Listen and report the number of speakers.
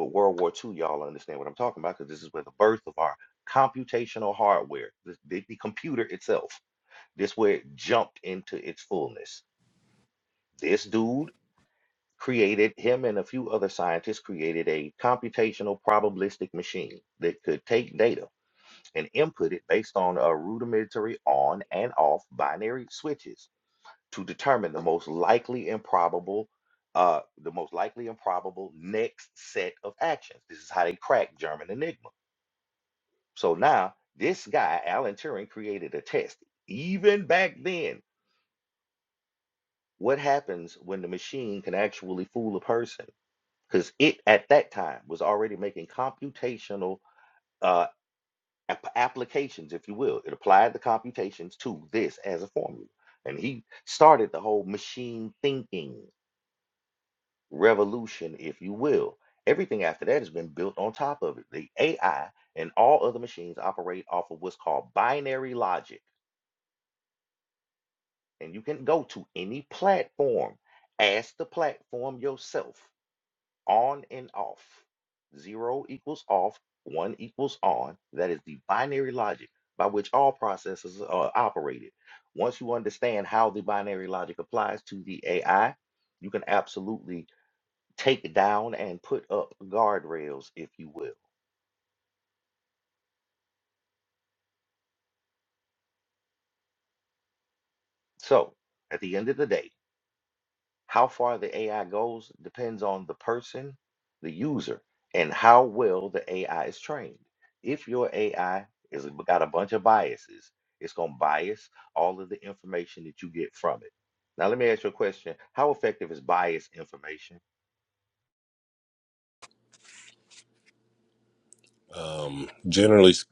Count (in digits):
2